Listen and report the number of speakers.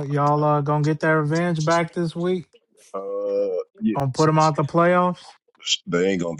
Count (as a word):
two